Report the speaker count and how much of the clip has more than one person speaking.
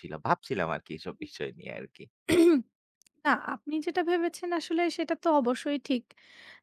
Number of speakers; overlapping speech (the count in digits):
2, no overlap